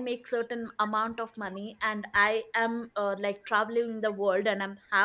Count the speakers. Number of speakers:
one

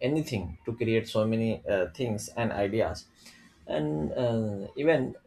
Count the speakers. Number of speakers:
one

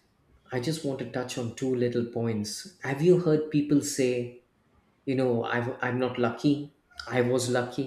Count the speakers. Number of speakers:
one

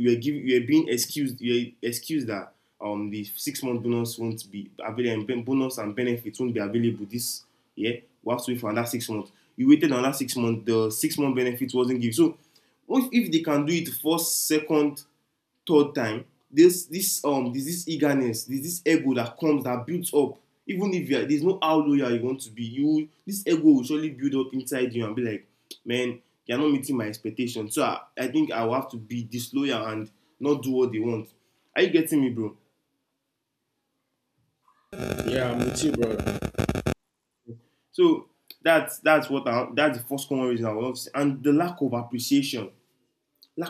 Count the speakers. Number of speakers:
two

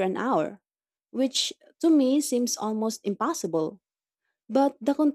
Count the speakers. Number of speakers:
one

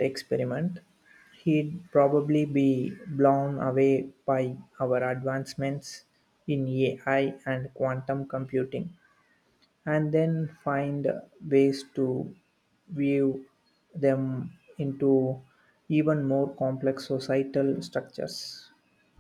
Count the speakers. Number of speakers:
one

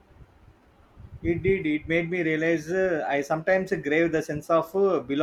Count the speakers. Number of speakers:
one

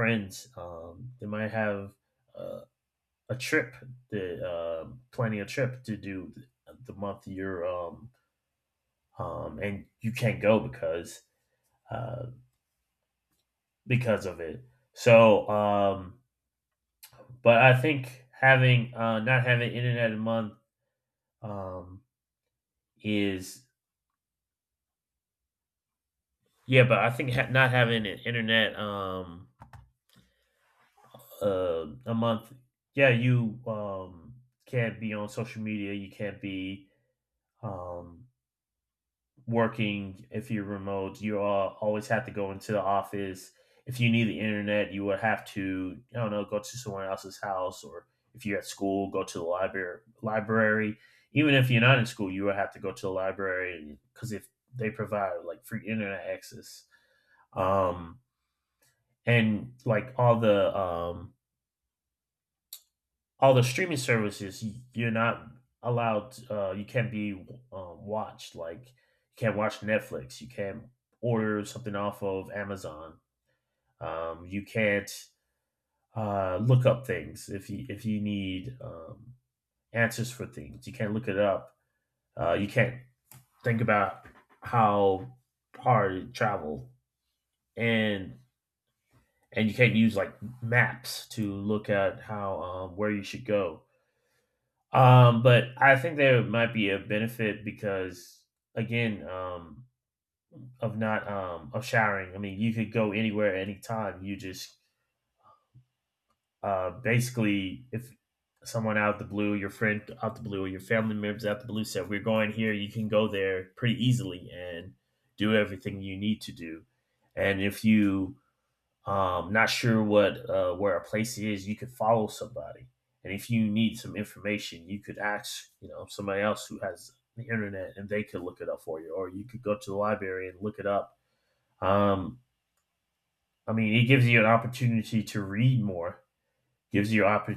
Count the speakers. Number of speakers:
one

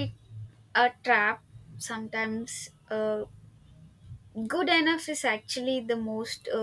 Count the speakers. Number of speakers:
one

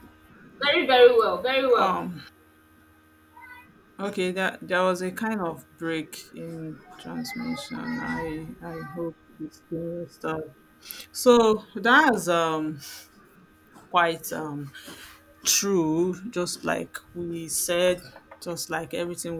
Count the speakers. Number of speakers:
two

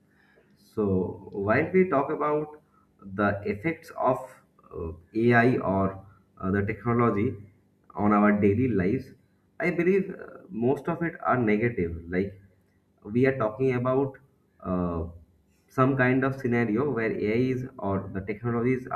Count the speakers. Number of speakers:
one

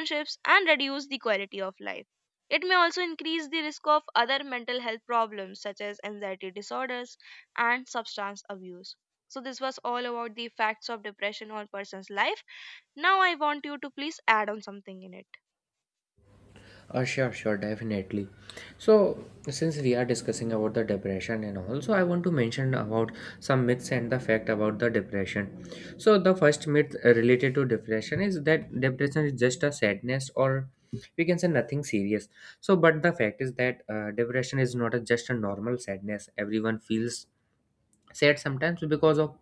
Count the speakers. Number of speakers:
two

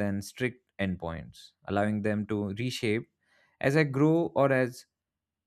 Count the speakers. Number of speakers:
one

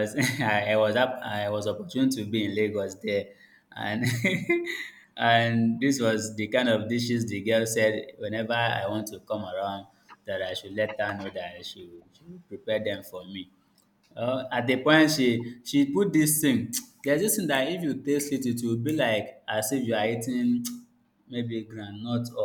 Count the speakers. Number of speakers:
one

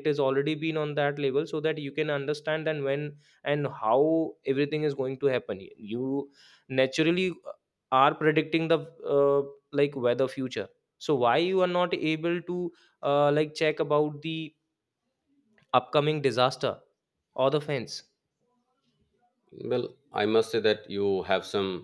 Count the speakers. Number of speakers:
two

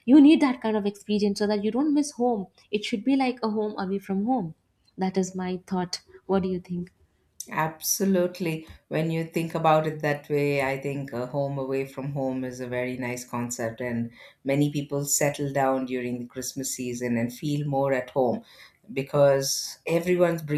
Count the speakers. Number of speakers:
two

